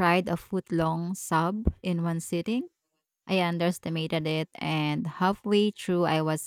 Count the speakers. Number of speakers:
1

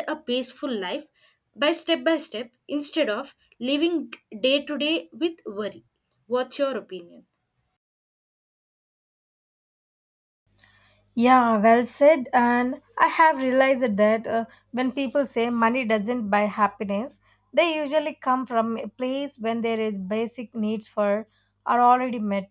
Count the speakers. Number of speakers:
2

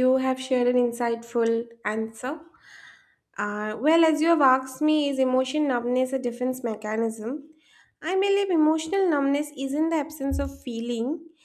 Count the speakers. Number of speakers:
1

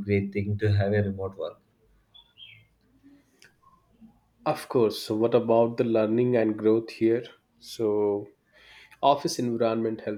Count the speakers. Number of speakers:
2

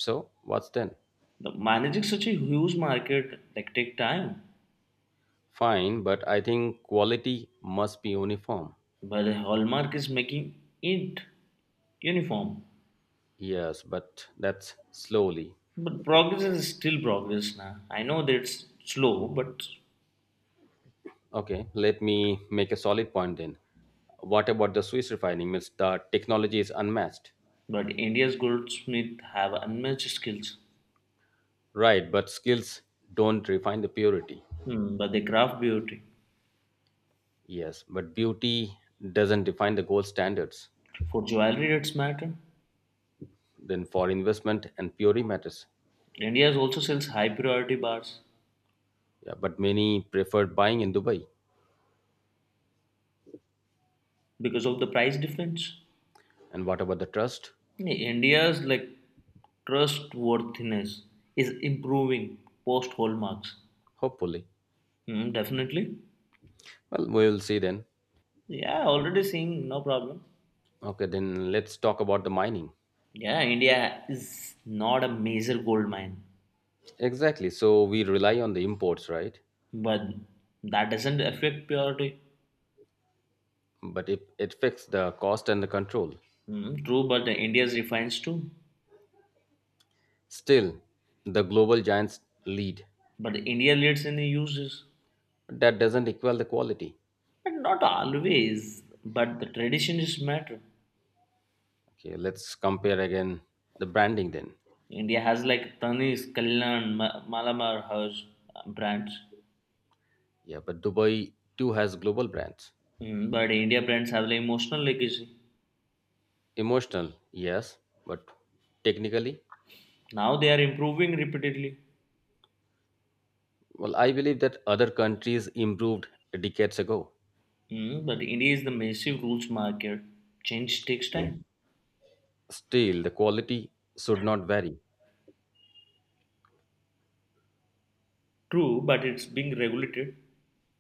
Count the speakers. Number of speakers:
2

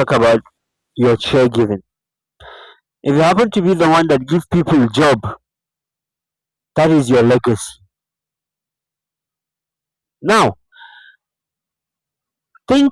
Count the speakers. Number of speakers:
1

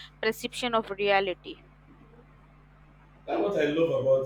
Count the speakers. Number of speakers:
2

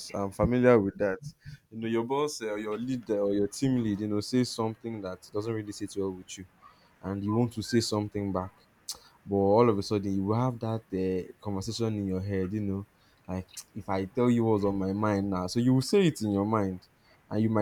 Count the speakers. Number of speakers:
1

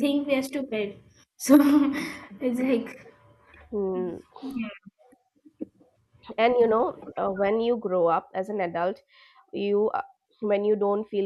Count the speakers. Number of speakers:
2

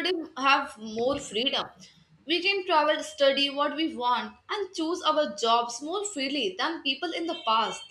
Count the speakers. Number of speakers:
1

